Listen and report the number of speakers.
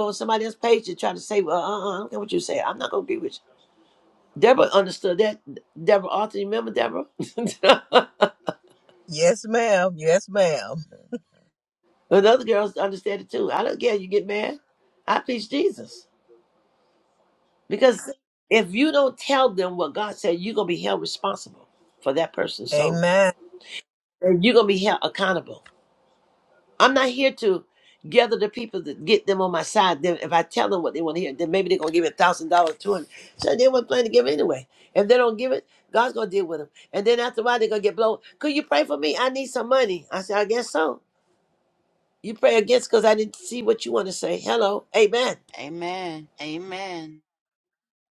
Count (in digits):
3